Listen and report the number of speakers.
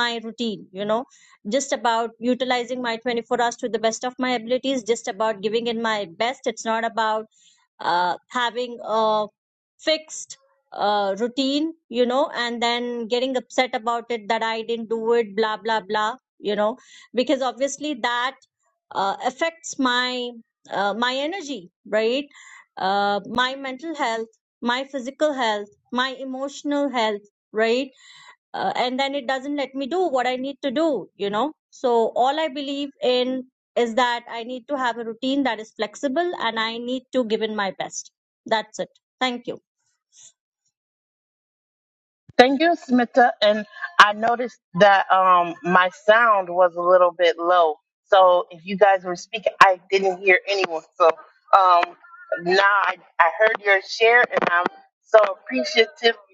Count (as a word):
two